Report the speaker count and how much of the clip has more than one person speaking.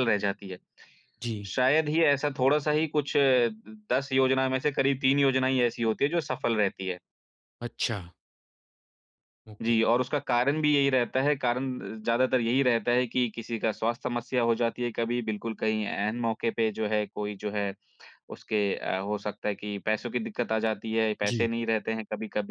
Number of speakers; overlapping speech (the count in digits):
2, about 2%